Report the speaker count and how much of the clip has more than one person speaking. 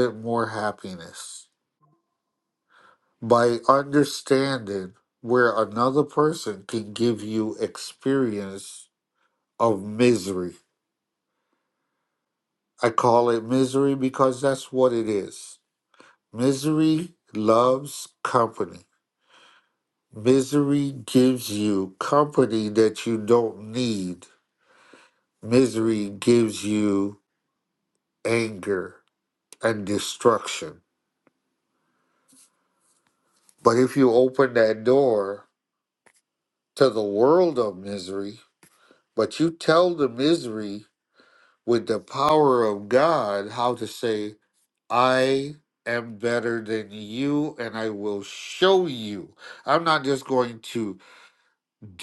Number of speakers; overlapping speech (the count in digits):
1, no overlap